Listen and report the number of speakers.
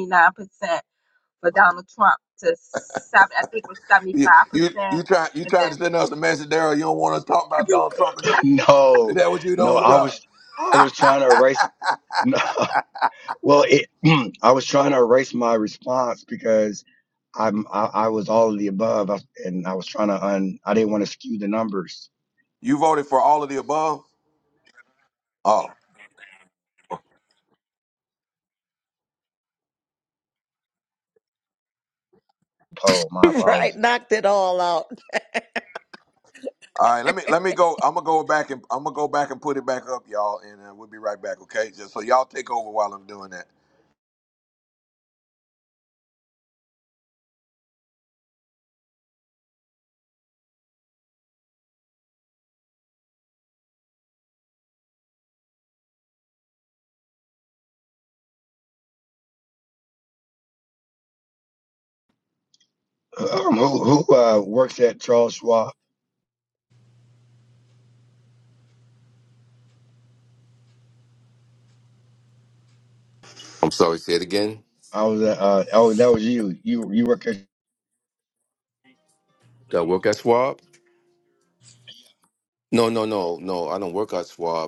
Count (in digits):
5